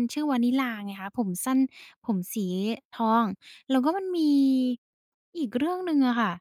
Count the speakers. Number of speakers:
1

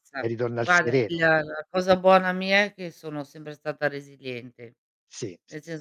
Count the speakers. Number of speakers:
2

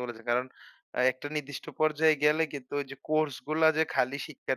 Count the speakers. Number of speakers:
1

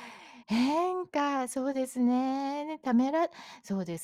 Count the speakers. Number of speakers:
1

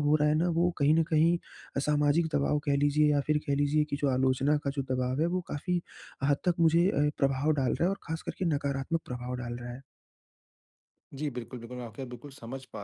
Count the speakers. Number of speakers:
2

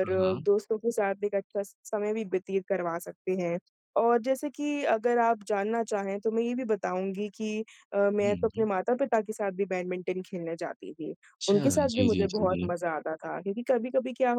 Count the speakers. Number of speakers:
2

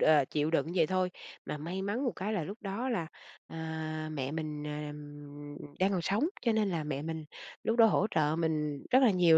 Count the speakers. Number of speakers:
1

